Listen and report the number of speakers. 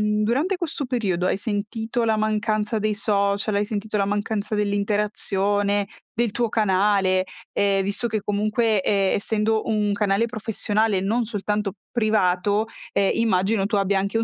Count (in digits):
1